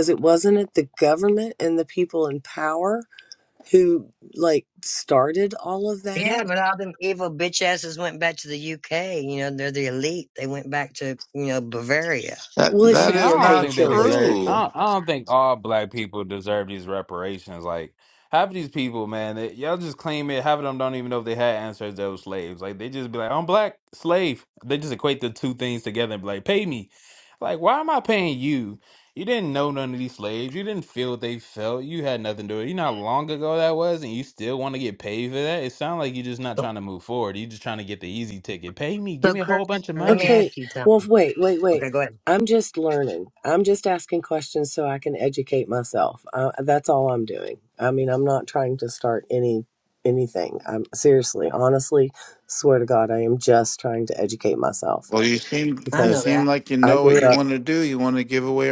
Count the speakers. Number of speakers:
4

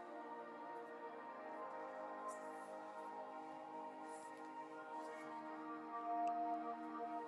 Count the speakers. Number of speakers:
0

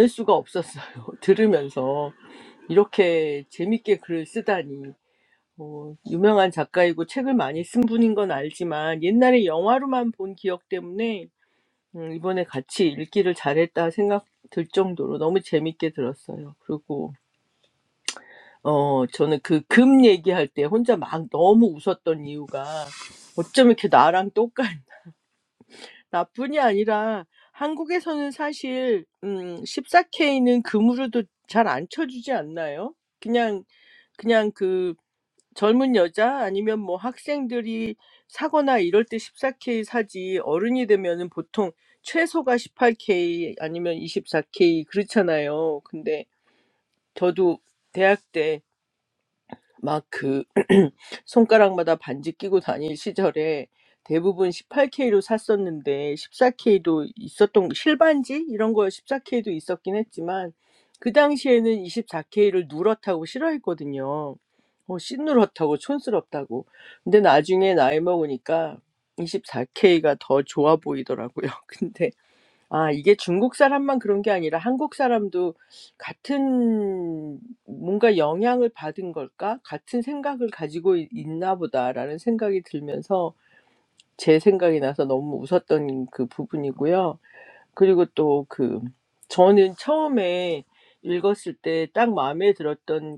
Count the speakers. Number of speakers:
1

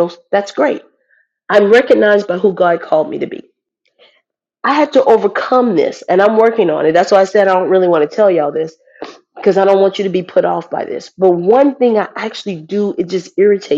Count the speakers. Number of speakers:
1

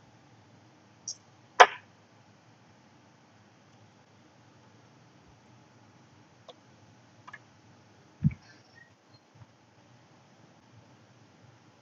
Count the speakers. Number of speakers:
0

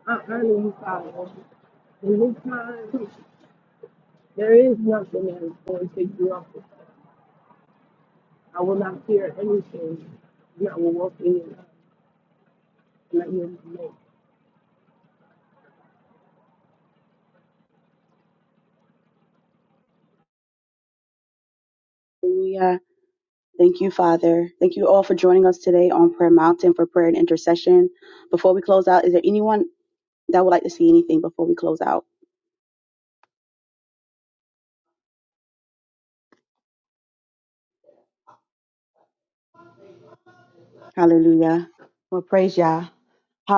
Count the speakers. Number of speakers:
2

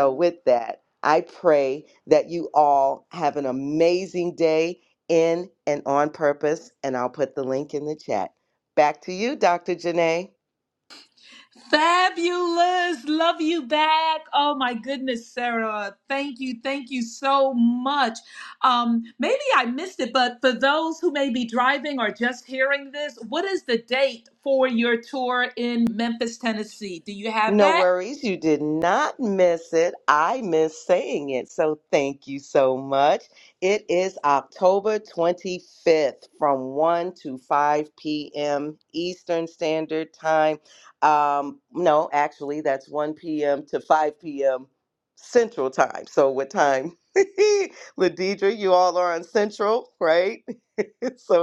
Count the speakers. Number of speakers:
2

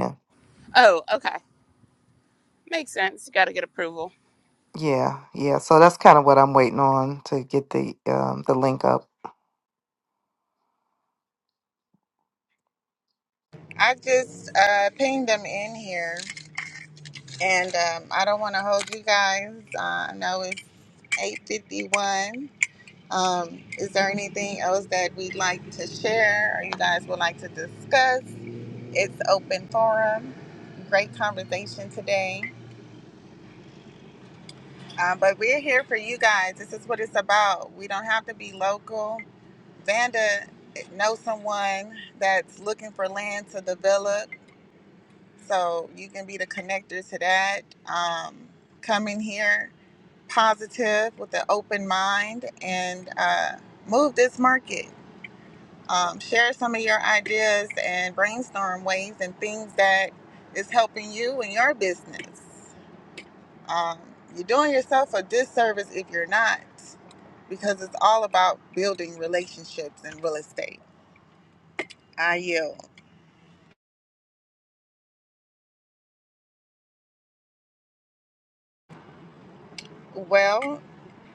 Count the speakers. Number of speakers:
3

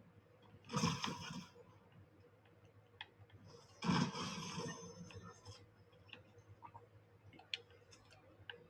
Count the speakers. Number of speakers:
0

